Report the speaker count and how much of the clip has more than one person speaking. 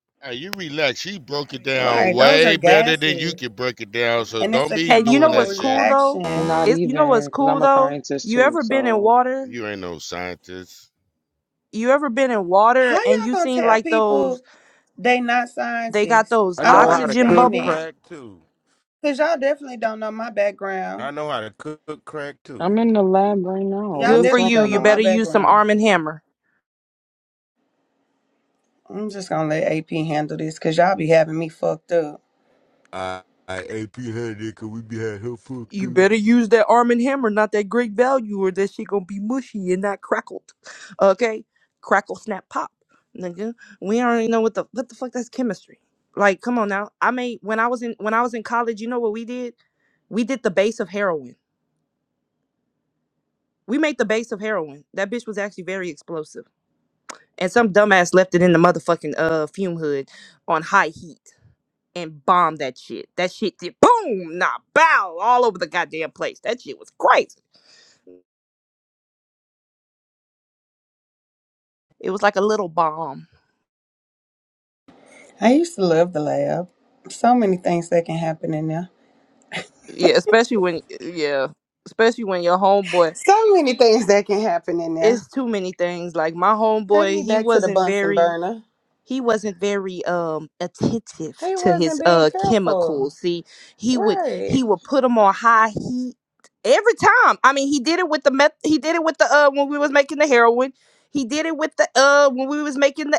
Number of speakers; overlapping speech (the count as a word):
five, about 14%